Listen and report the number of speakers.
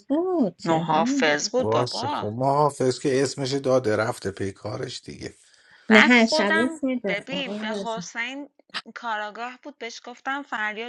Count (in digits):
3